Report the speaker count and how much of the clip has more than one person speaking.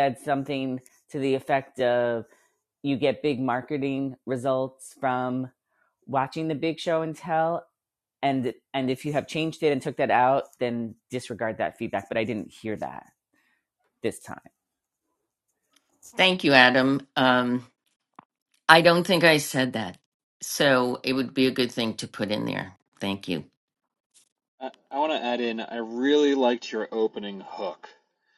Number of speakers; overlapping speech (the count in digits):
3, no overlap